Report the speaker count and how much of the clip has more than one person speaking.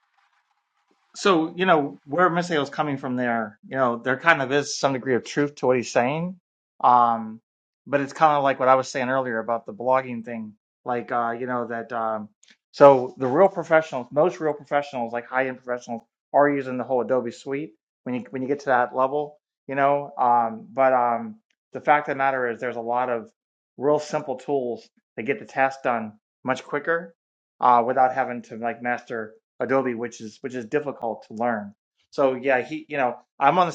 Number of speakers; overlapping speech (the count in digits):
1, no overlap